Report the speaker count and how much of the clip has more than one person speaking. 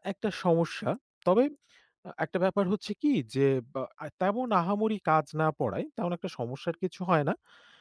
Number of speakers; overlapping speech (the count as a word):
one, no overlap